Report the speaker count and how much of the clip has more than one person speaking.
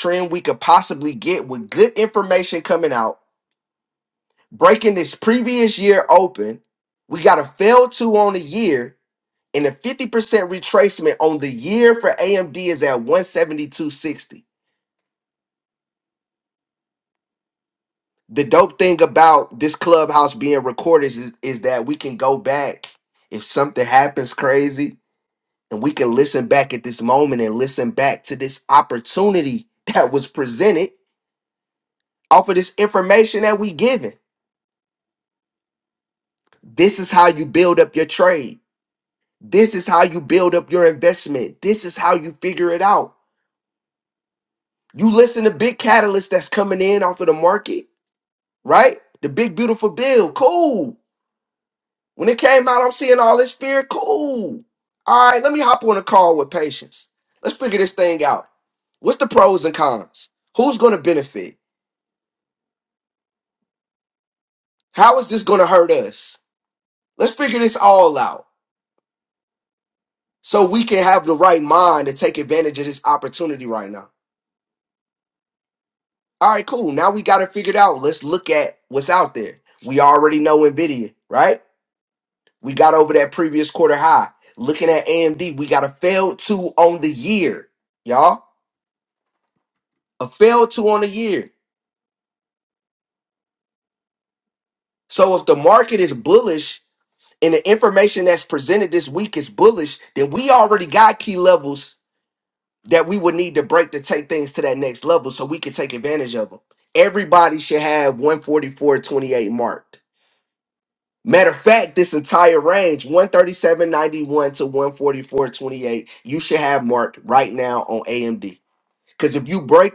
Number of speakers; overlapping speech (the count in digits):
1, no overlap